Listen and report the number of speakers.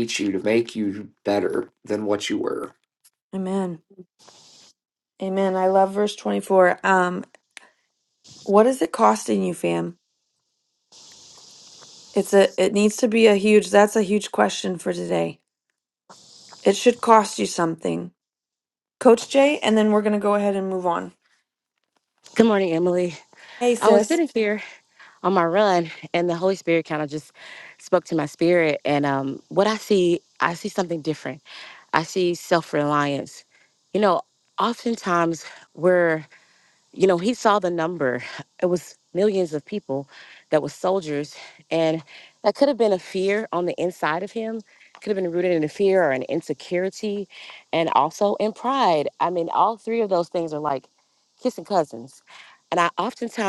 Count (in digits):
3